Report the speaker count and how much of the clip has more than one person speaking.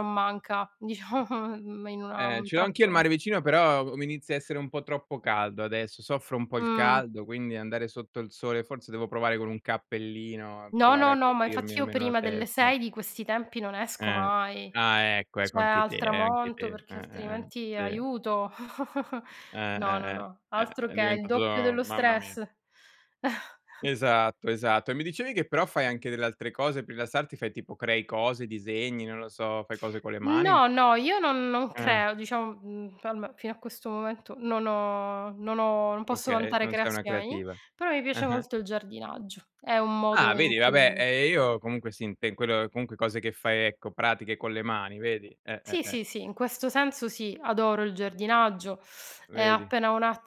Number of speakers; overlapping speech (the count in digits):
2, about 23%